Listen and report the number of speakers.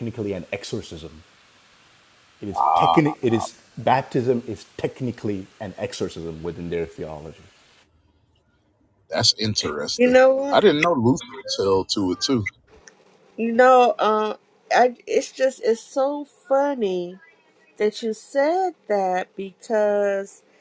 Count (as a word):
three